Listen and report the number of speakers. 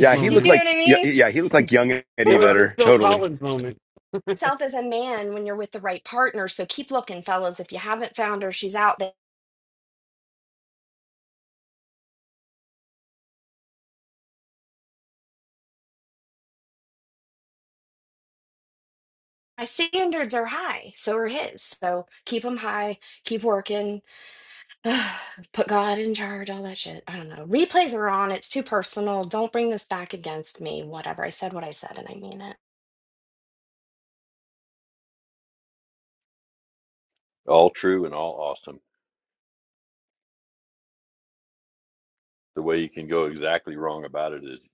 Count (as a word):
four